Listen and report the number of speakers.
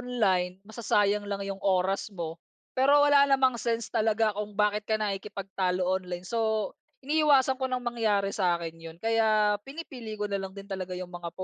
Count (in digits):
1